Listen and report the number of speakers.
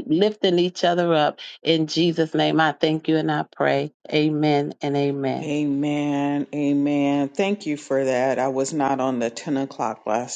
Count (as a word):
two